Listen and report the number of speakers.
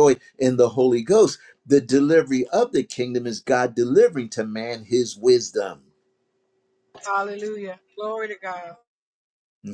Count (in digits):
2